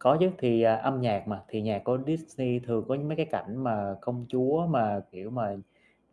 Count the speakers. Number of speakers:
one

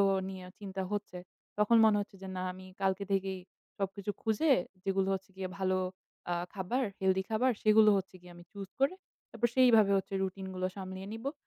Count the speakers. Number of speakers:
one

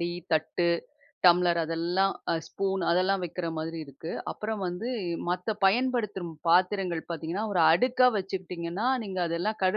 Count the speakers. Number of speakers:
one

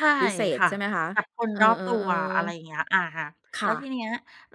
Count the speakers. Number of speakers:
two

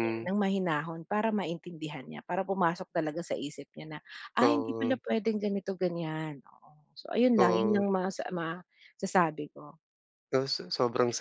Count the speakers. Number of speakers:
two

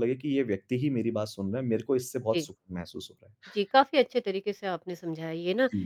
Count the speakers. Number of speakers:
two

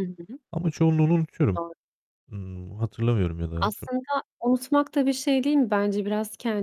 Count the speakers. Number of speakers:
two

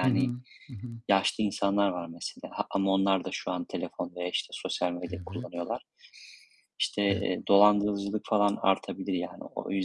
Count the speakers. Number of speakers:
two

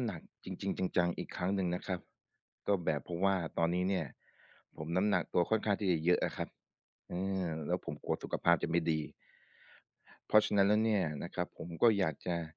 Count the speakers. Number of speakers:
one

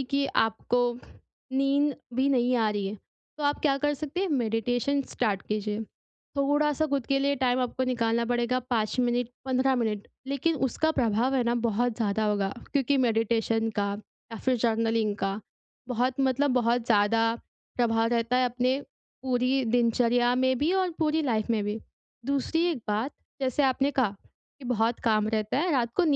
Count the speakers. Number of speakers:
one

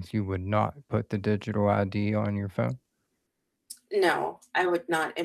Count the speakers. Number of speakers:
two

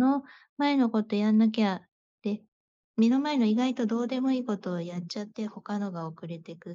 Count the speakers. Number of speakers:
one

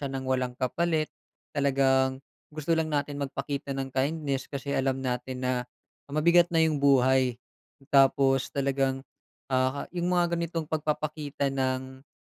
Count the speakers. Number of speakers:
one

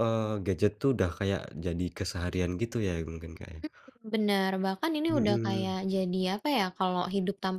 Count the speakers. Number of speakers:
two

